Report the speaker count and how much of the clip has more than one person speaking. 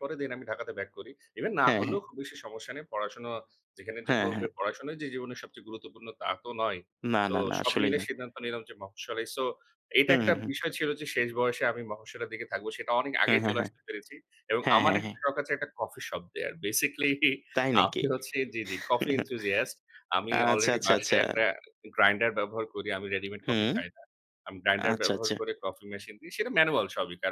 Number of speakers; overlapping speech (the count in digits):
2, about 17%